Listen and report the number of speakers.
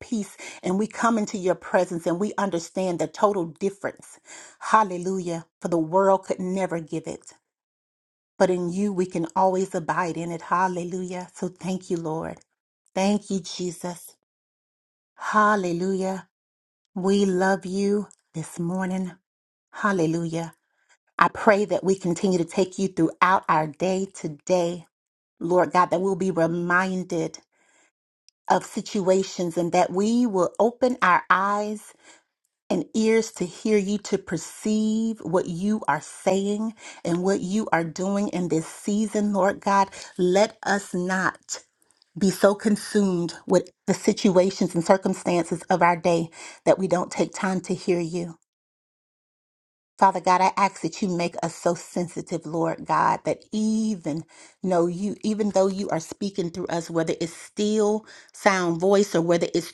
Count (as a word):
one